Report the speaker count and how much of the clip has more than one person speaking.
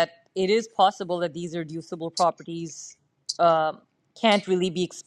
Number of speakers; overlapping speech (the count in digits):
1, no overlap